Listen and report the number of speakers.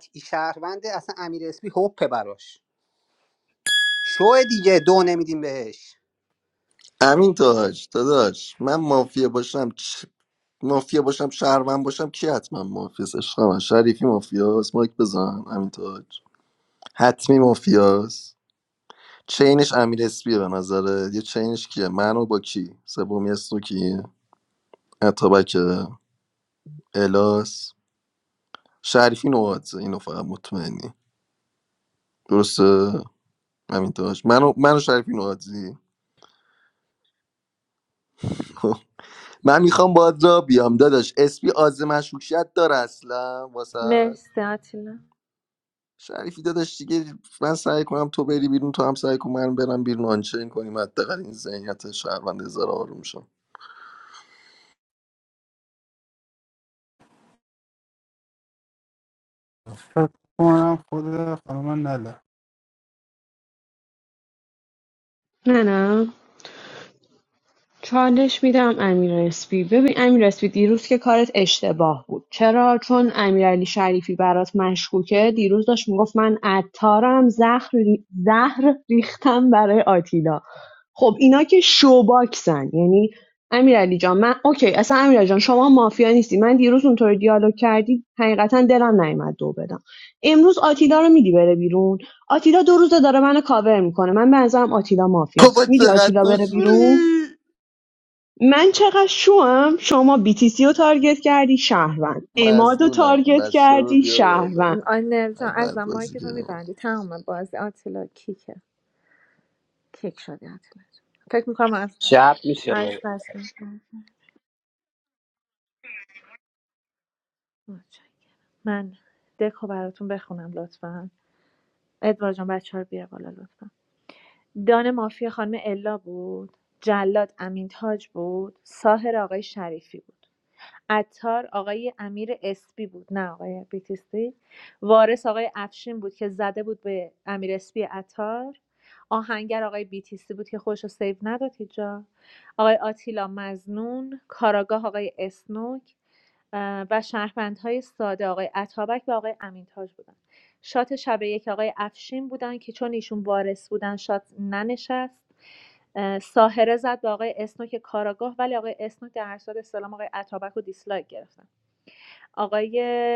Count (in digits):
5